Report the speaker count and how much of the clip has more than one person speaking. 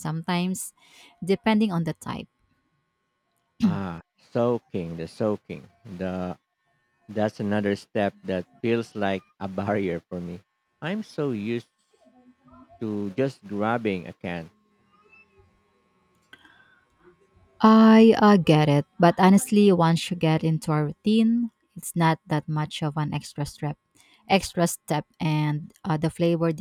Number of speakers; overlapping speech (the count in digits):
2, no overlap